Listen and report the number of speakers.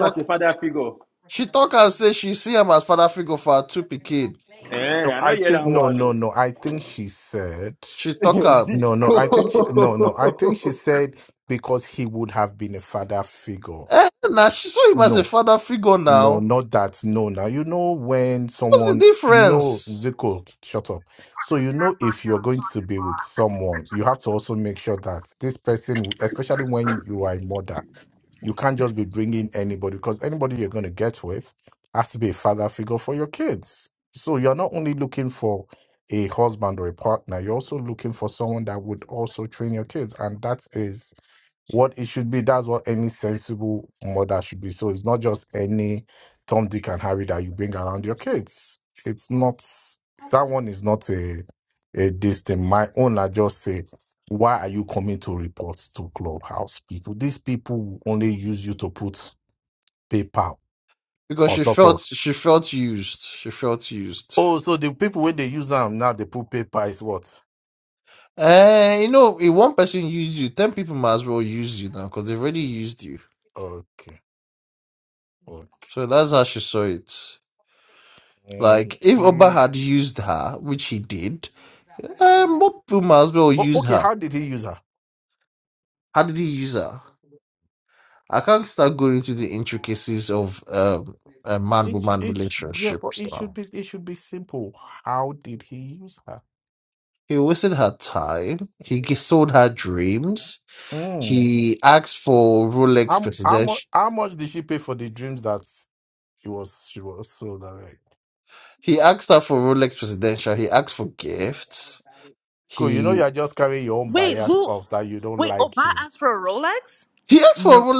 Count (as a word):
four